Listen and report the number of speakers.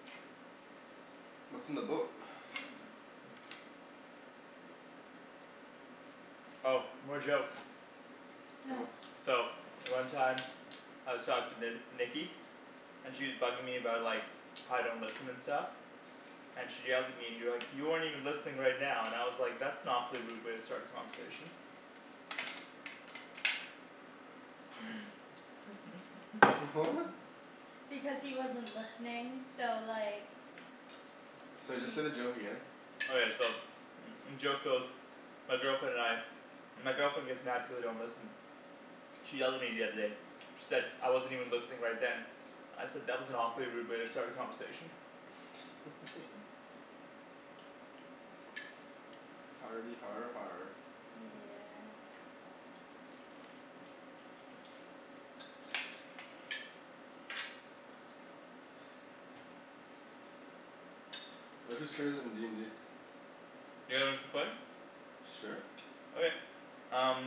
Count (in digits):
3